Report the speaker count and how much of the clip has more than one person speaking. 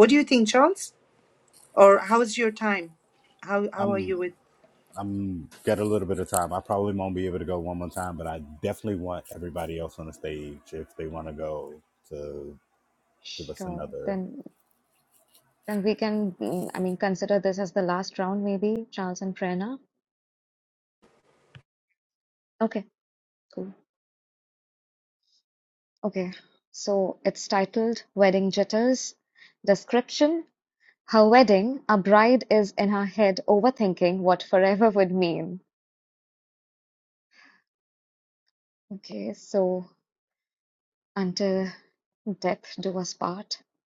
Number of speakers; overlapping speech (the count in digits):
3, about 2%